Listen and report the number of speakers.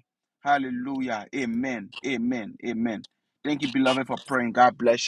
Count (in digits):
1